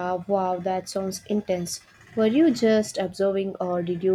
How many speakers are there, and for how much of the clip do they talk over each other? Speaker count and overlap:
1, no overlap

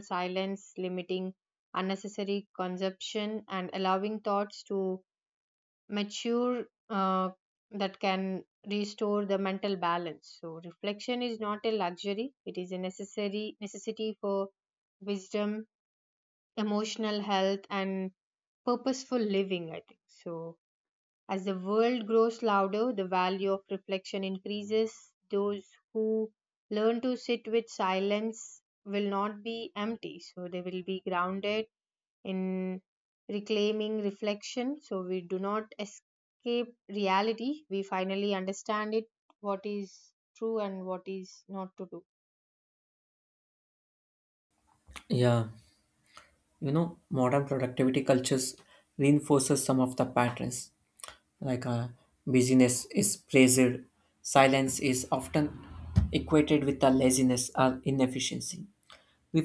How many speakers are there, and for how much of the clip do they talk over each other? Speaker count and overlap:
2, no overlap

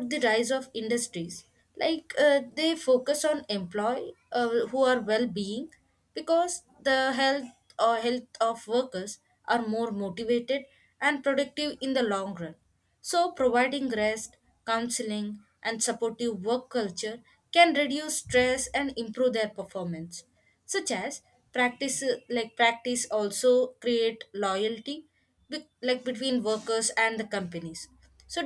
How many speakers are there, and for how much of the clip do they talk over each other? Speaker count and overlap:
1, no overlap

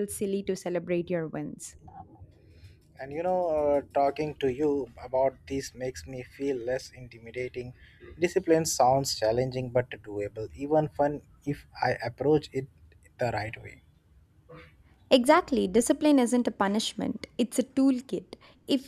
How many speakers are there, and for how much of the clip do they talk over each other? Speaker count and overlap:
2, no overlap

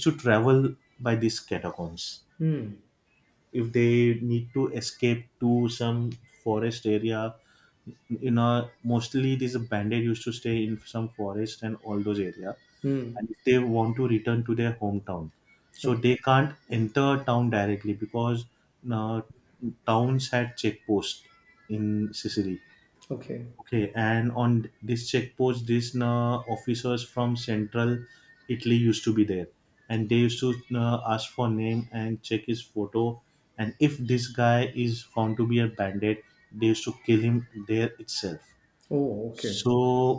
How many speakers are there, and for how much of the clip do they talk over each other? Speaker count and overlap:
2, about 1%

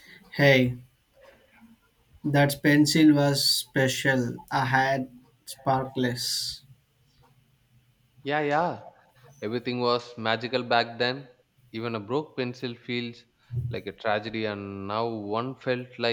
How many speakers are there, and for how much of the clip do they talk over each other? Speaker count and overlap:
2, no overlap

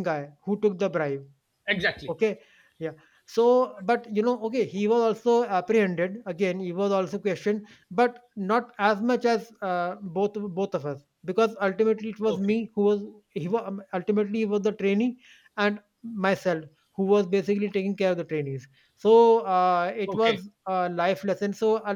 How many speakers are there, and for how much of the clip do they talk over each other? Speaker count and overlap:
2, about 3%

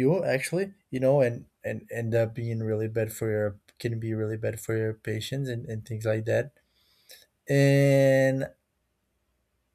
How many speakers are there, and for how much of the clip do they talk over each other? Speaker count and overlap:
1, no overlap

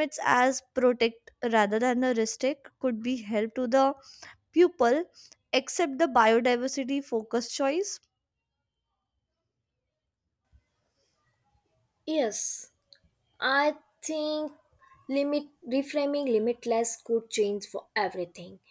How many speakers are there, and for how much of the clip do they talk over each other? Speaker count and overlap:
2, no overlap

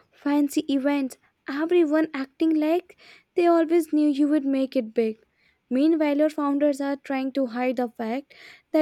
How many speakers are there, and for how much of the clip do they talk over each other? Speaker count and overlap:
1, no overlap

